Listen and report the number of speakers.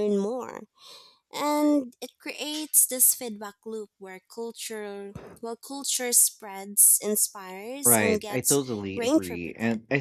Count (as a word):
two